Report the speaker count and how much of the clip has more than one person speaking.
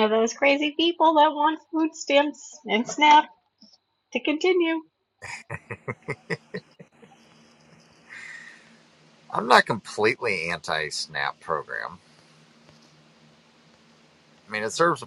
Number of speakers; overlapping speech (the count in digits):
2, no overlap